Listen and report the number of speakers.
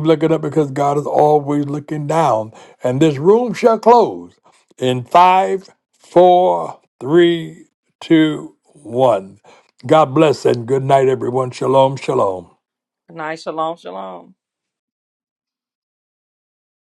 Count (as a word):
two